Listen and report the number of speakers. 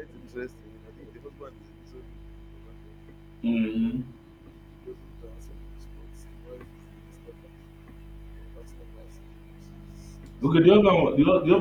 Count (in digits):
2